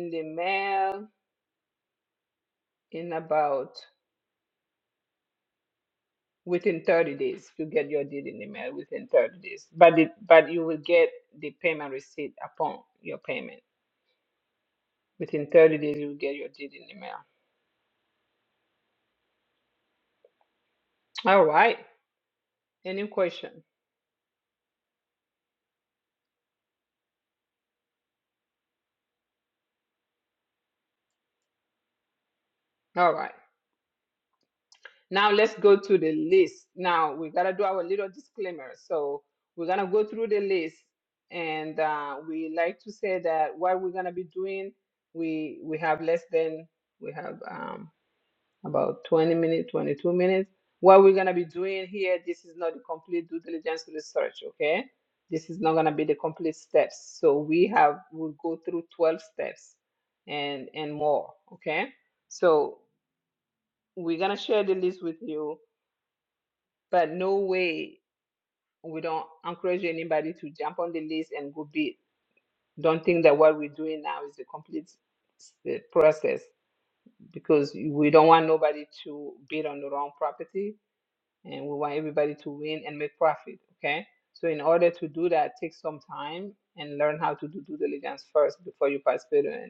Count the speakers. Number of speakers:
1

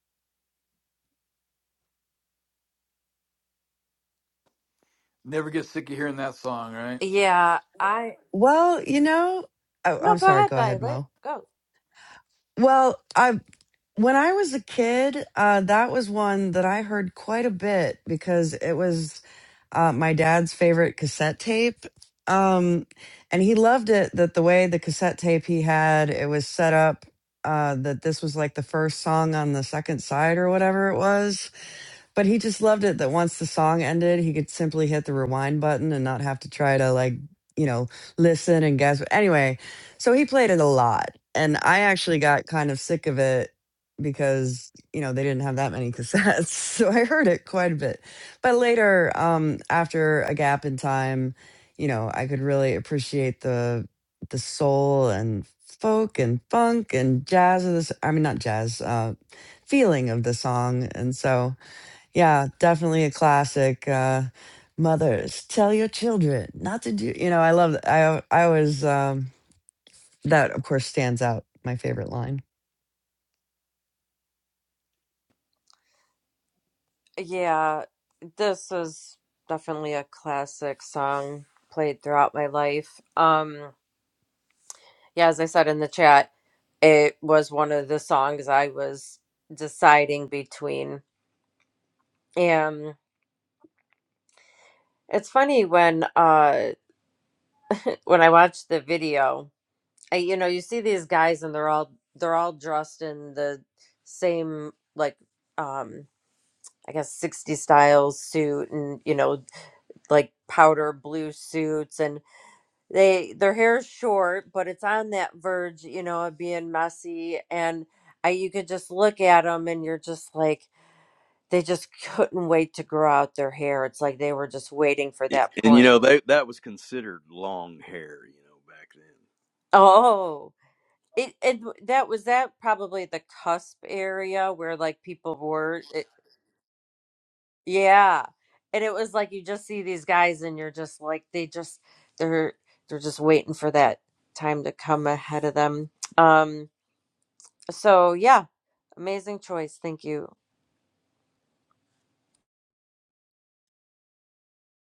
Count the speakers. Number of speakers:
4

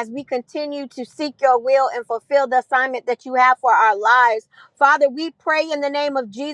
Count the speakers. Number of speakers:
1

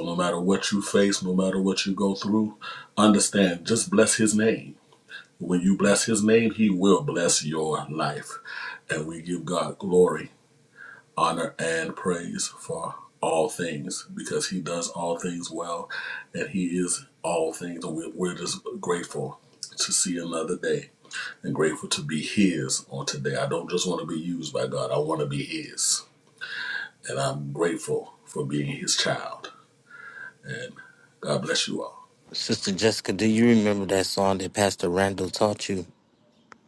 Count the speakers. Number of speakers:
2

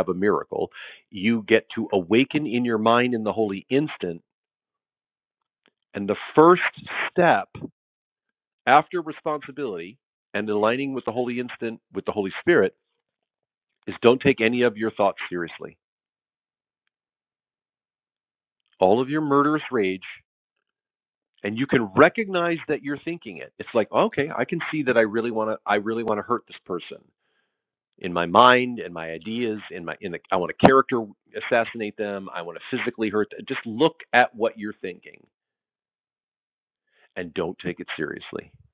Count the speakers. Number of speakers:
1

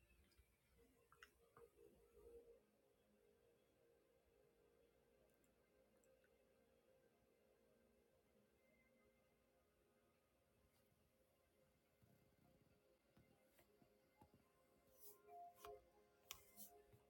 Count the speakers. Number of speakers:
0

